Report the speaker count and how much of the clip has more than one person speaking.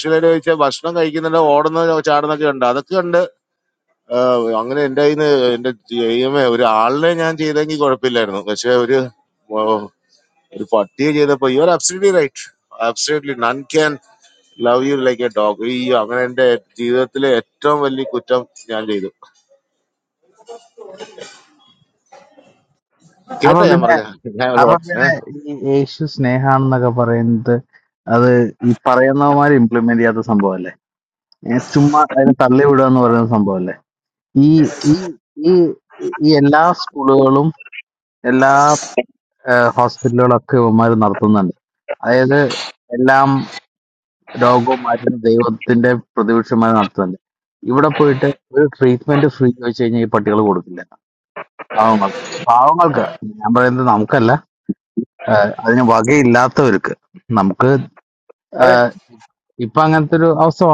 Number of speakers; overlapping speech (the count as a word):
two, about 2%